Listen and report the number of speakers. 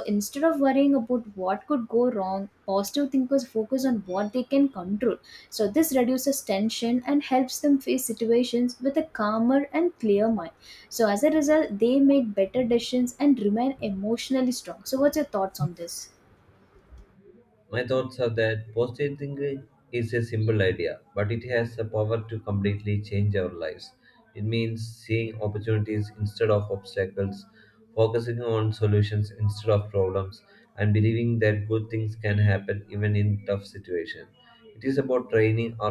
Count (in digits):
2